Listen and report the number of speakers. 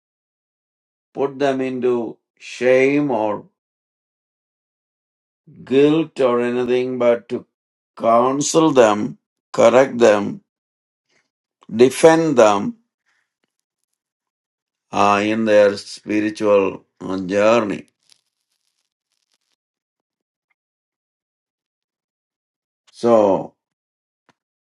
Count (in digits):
1